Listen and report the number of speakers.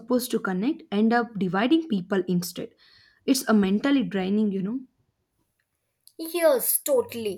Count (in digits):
2